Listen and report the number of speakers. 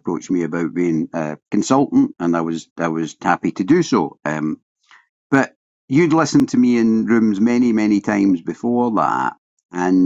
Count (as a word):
one